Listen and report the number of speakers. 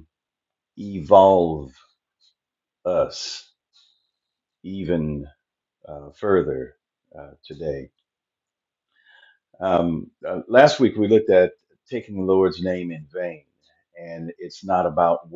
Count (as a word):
one